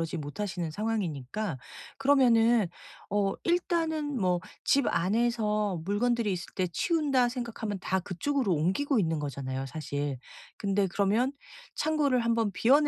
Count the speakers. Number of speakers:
one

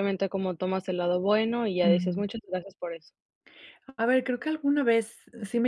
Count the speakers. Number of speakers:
two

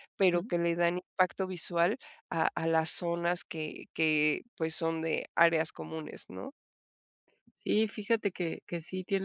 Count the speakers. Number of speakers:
two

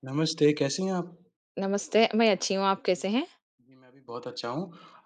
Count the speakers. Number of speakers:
two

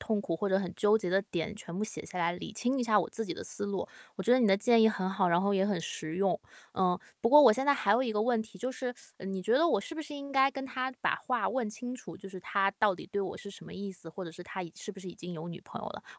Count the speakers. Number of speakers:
one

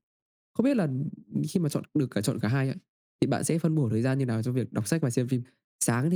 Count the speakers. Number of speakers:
one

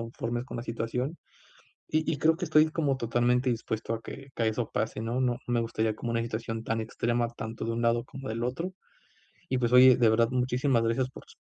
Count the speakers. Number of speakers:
one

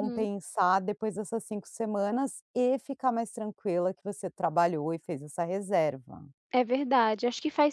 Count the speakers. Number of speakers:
two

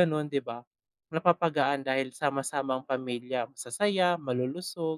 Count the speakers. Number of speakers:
one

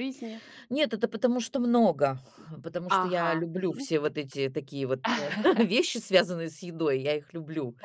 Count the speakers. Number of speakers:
two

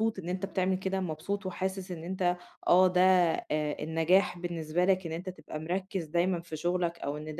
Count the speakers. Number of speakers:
one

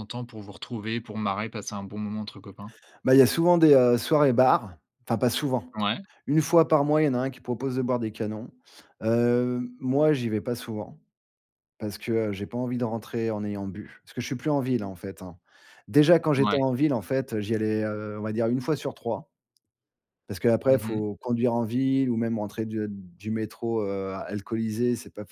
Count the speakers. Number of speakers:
two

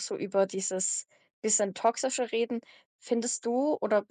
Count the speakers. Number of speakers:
one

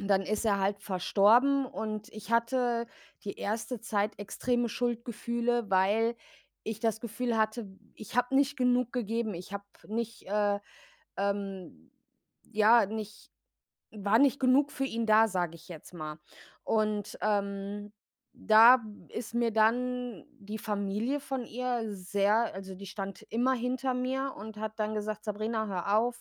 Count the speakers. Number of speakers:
one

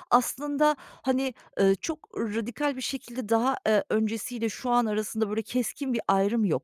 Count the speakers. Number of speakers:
one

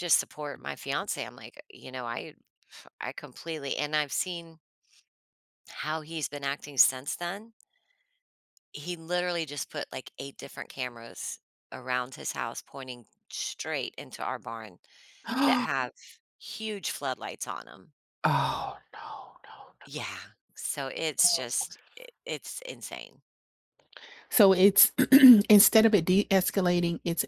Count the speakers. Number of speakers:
two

